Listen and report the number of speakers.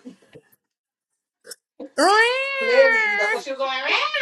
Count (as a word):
two